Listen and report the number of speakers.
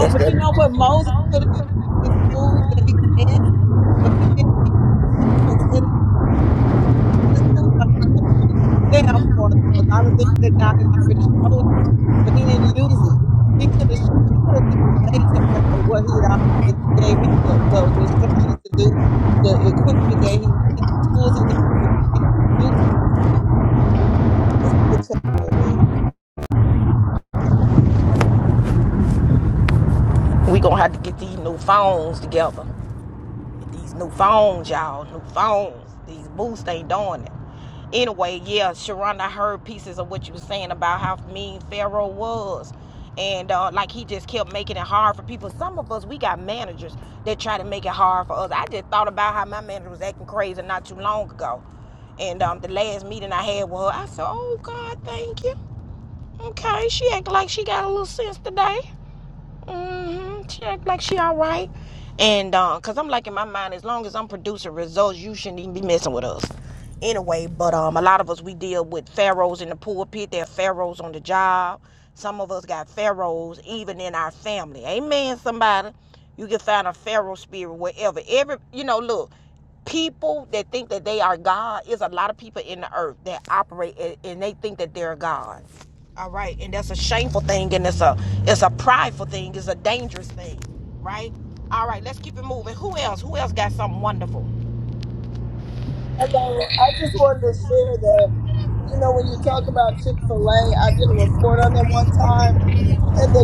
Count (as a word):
three